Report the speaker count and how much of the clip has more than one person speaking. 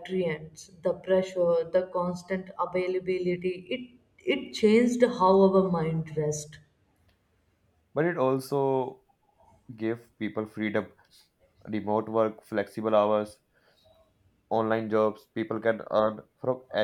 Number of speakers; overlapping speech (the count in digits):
2, no overlap